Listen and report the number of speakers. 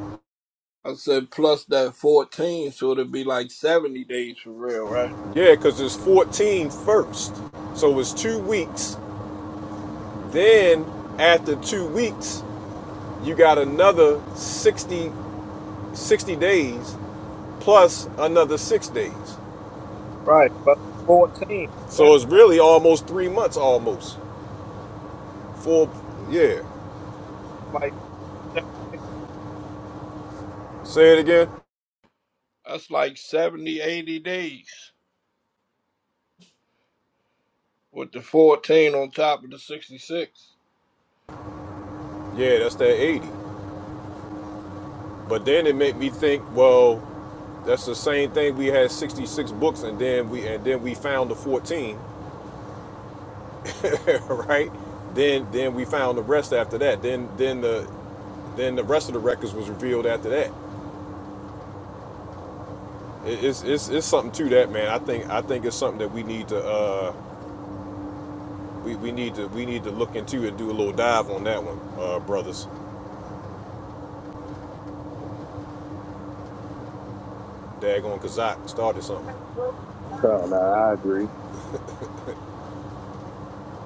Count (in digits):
3